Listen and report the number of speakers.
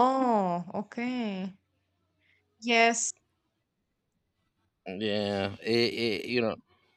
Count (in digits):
2